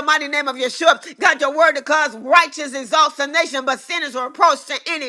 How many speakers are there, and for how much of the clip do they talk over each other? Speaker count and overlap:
1, no overlap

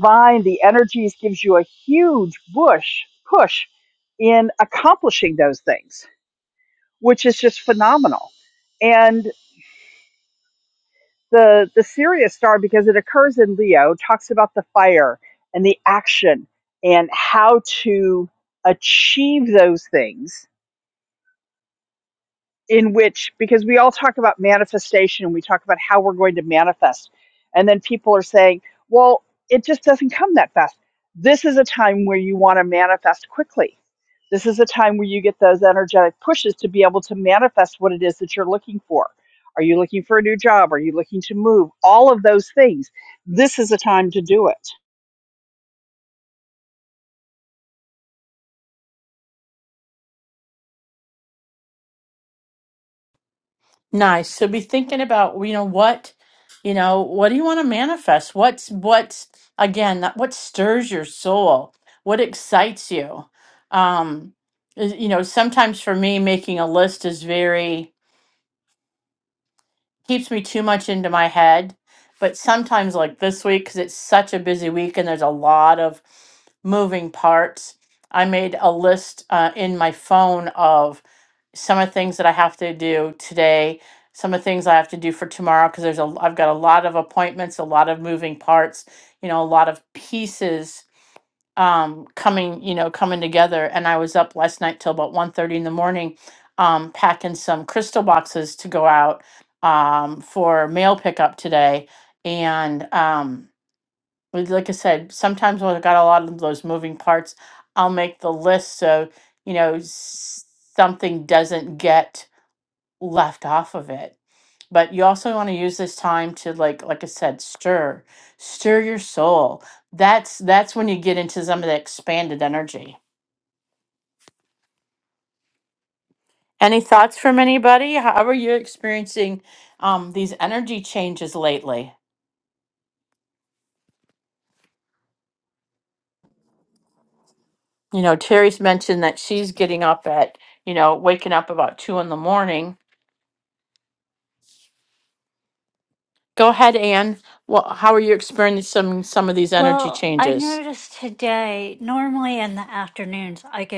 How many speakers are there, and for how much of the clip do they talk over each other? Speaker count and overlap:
3, about 1%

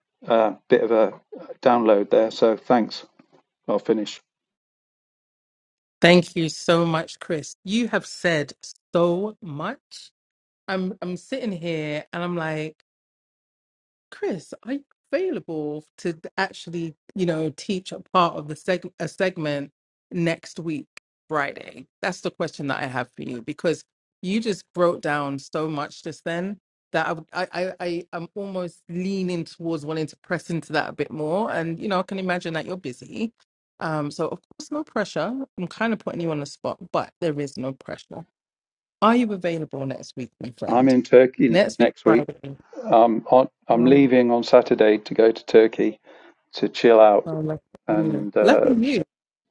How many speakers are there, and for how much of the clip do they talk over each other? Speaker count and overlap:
2, about 4%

